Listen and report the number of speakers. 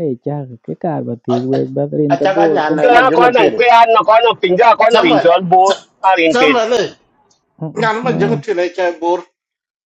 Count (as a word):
three